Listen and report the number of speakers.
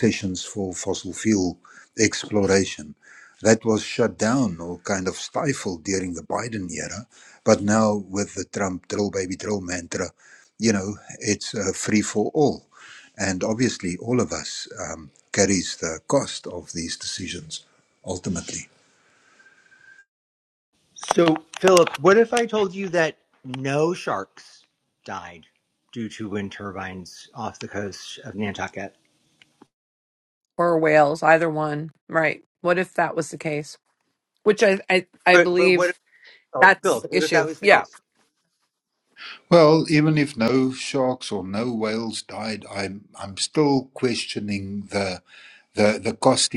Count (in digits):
3